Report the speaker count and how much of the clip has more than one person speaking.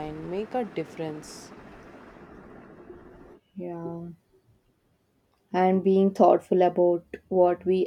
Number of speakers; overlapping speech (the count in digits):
2, no overlap